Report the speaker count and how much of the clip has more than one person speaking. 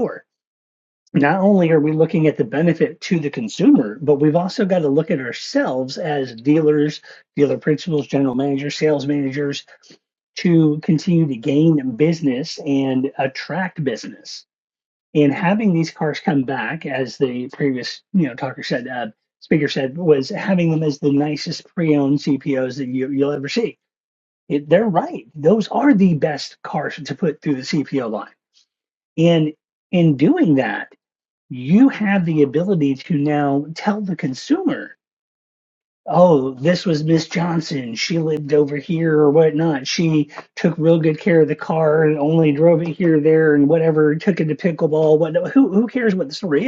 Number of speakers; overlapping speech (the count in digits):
1, no overlap